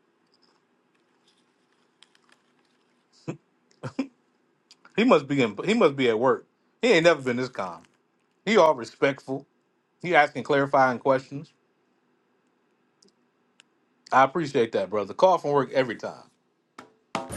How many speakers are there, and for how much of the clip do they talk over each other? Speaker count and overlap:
1, no overlap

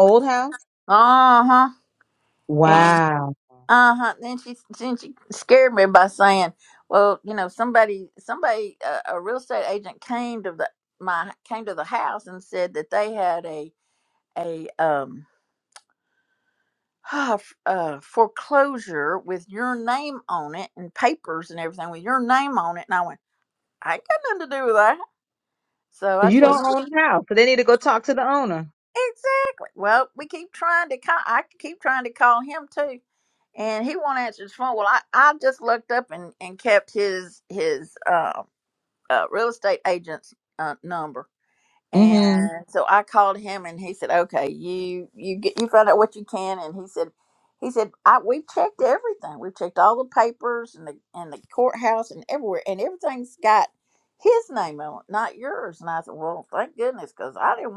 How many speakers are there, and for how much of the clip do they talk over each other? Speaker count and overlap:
2, about 3%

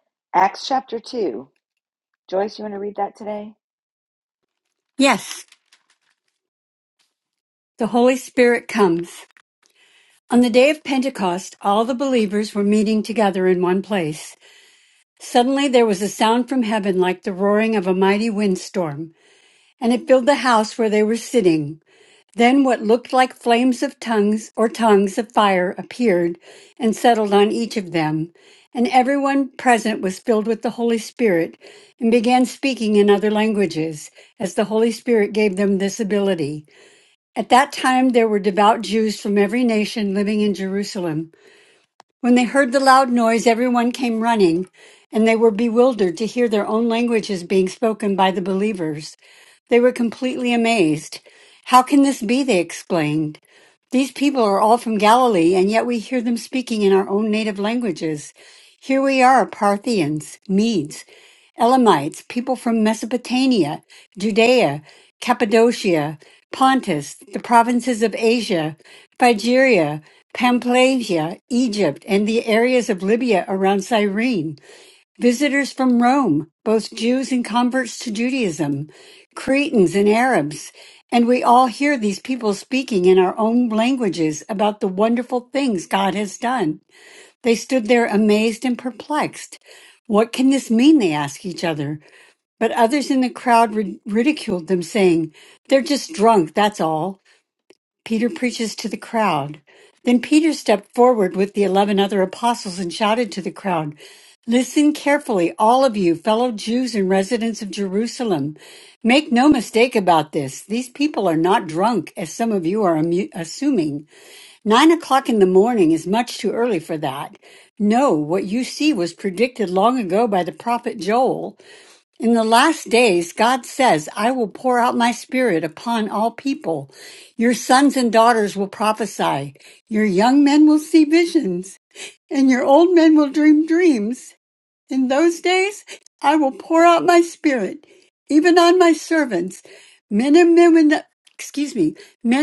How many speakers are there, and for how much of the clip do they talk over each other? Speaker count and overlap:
2, no overlap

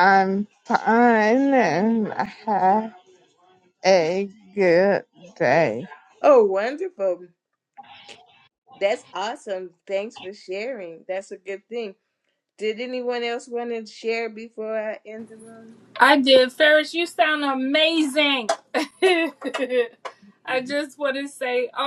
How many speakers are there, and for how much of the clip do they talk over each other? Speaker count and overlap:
3, no overlap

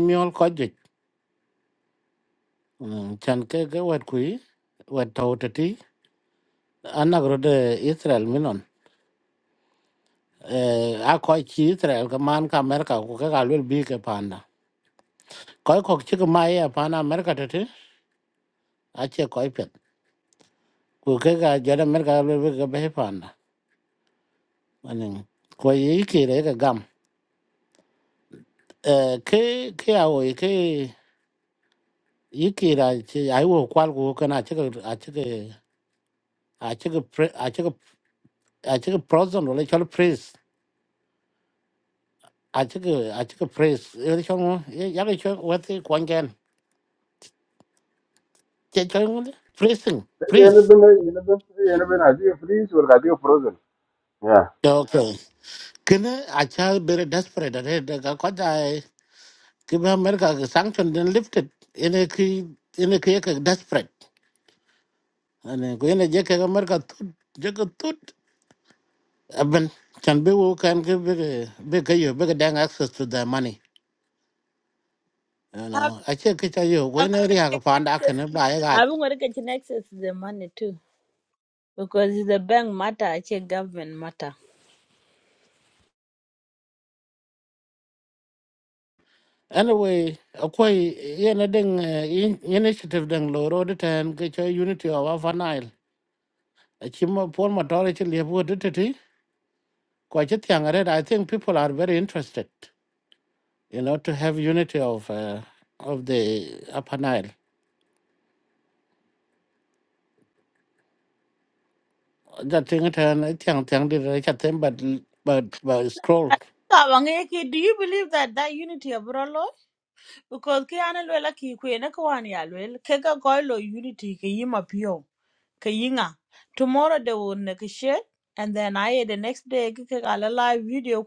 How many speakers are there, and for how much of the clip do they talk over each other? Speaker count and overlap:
3, about 1%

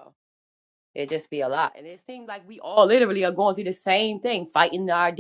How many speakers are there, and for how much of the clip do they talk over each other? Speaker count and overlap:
1, no overlap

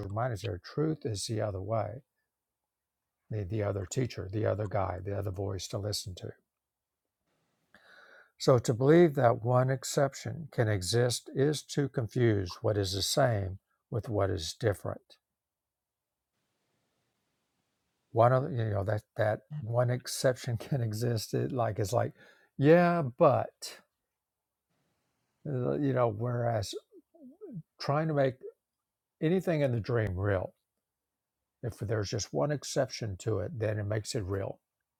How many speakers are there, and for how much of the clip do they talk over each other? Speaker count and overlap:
1, no overlap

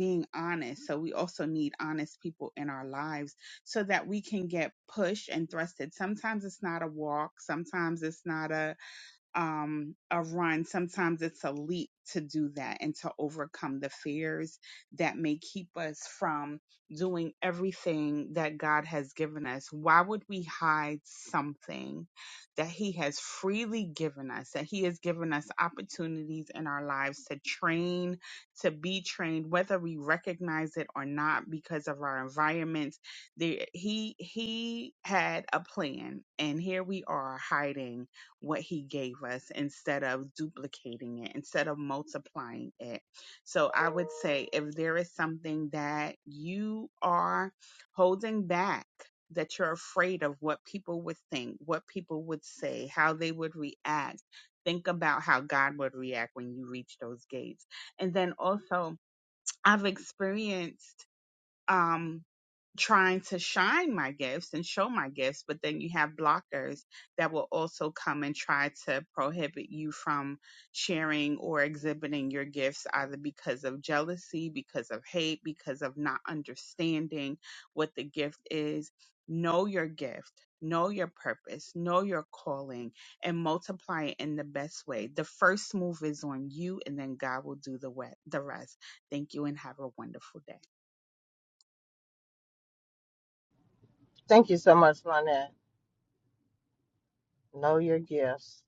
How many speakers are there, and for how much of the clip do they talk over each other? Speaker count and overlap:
2, no overlap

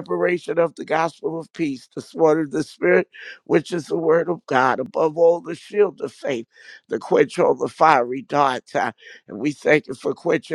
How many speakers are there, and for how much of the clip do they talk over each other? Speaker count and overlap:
1, no overlap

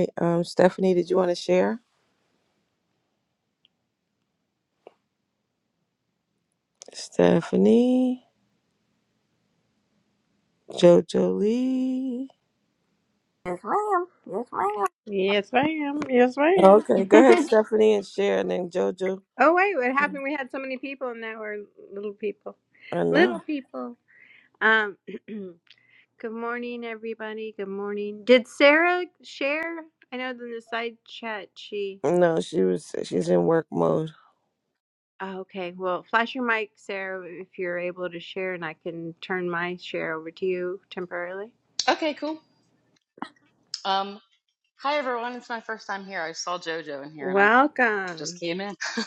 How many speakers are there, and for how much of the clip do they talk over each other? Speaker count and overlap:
4, about 2%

